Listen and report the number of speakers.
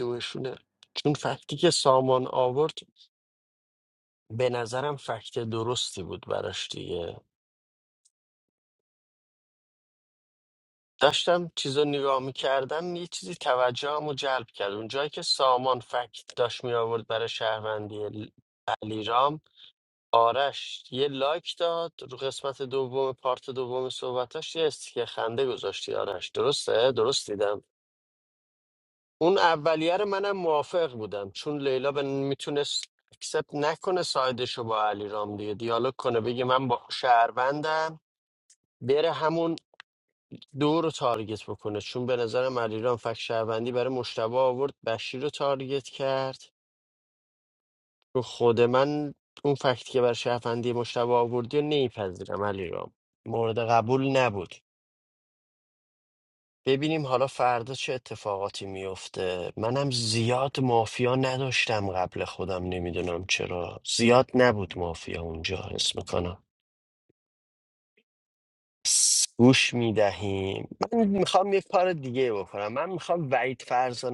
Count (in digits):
1